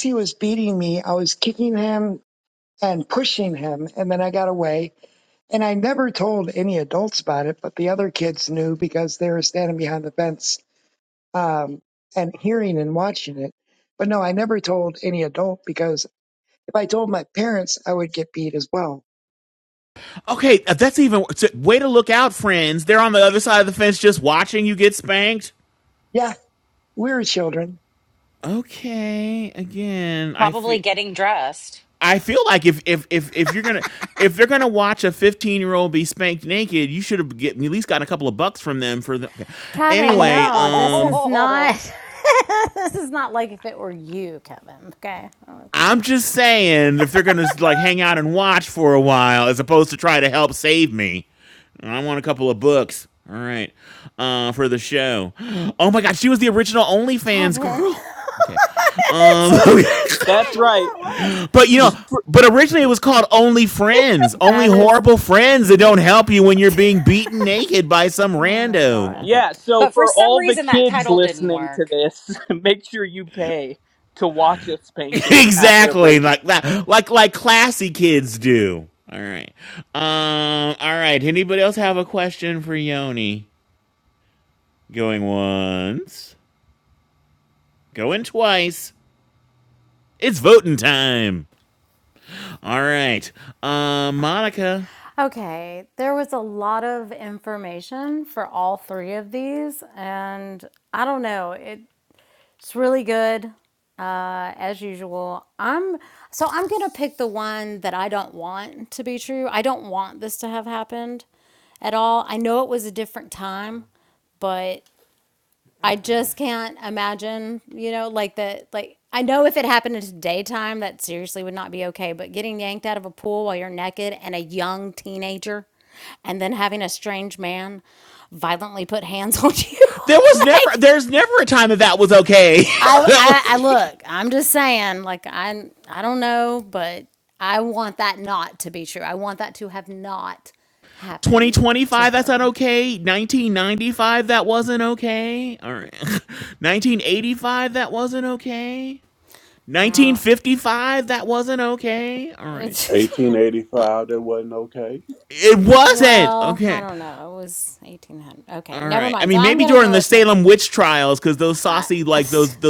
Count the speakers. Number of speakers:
six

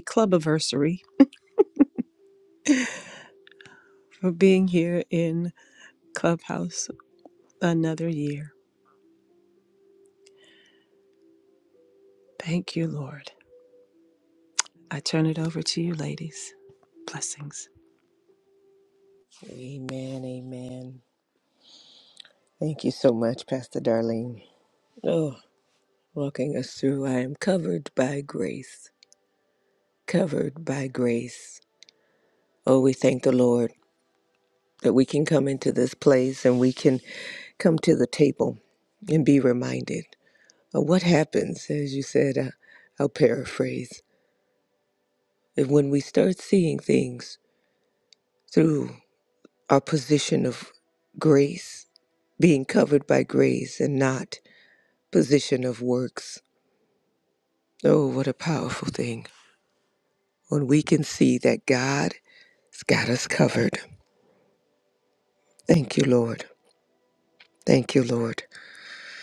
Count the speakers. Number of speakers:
two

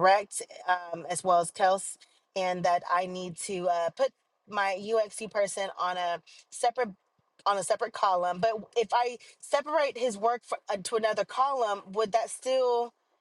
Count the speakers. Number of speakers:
one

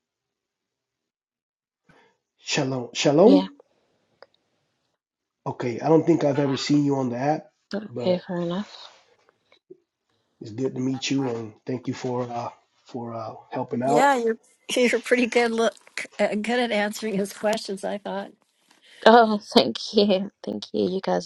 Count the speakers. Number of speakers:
three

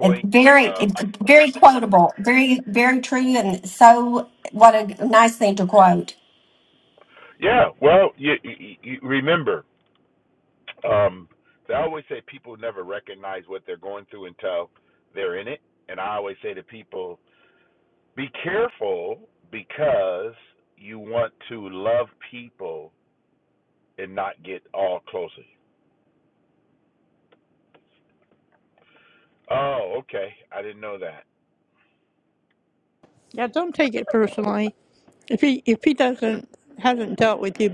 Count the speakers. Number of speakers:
three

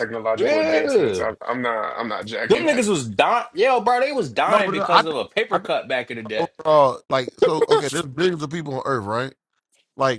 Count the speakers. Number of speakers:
three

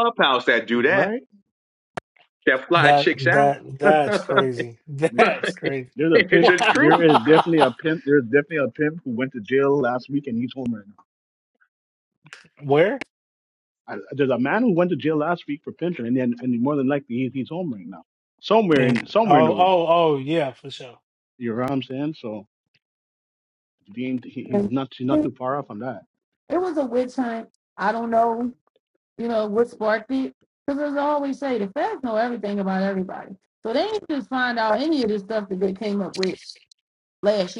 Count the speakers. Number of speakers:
four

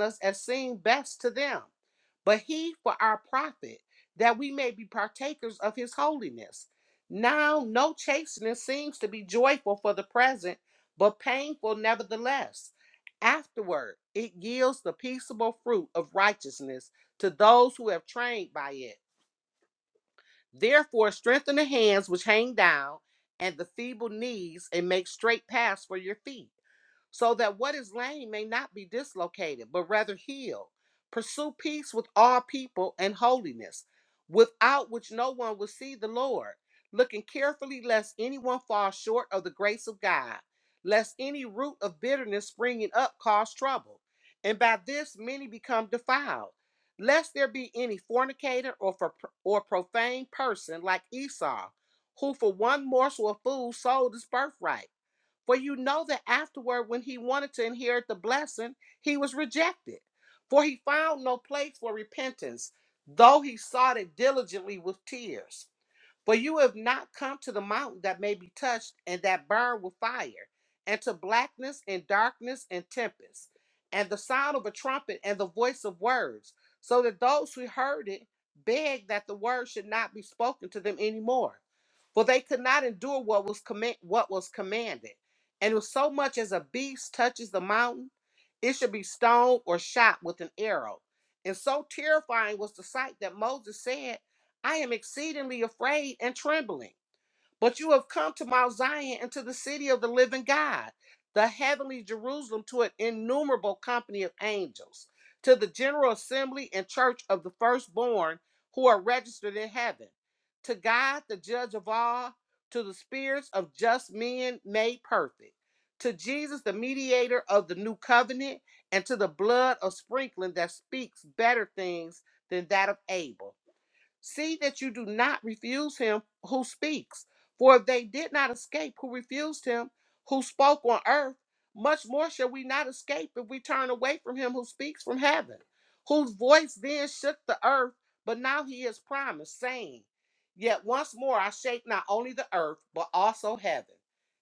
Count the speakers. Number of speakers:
one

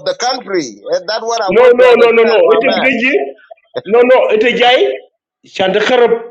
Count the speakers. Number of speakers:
two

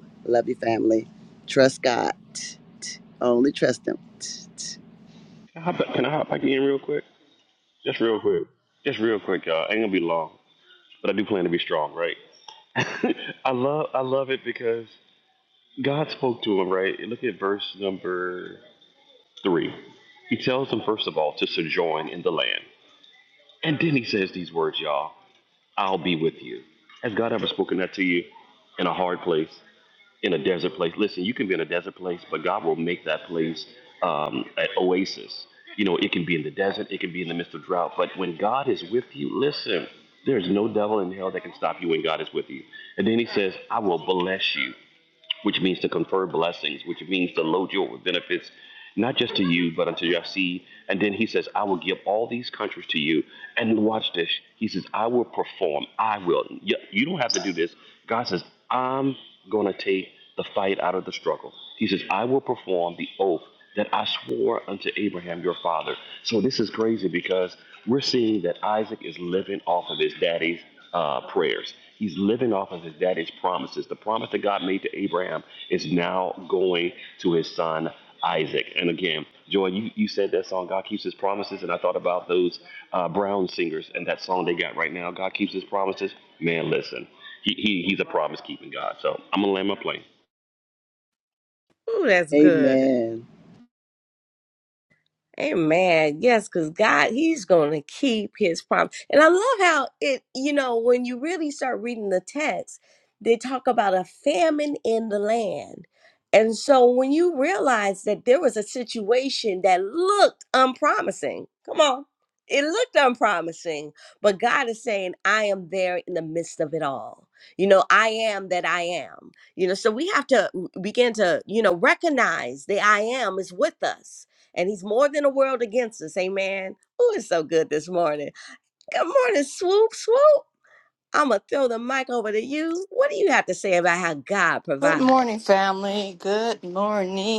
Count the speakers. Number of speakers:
four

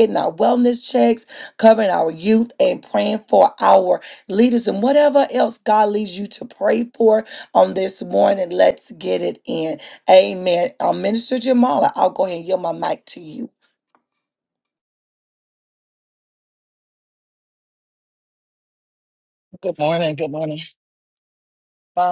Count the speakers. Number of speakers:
two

